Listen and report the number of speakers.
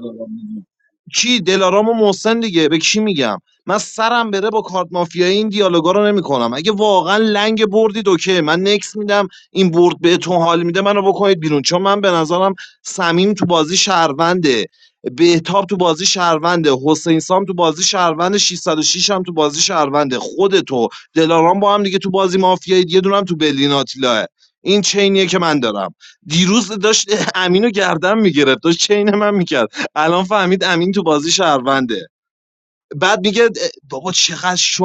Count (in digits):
1